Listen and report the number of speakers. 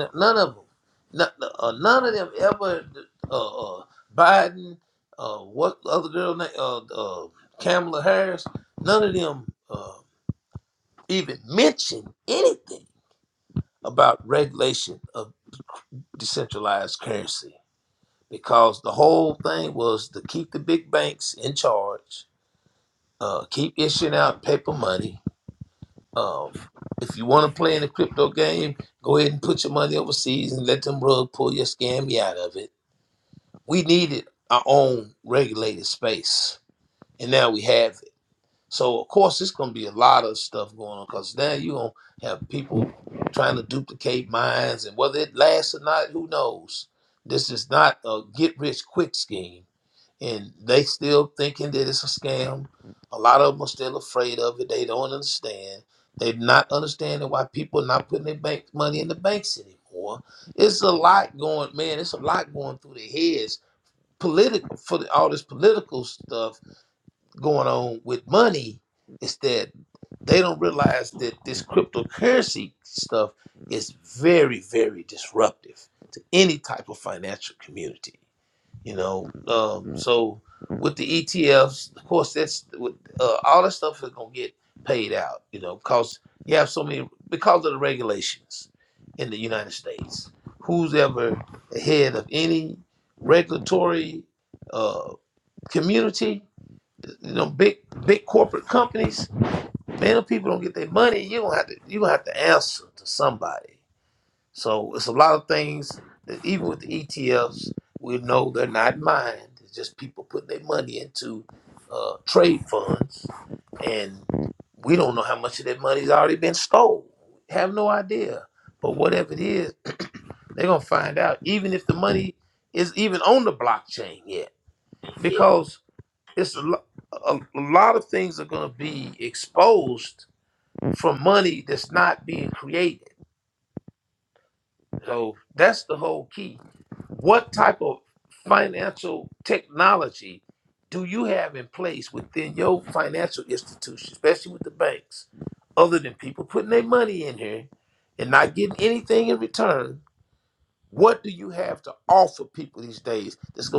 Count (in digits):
1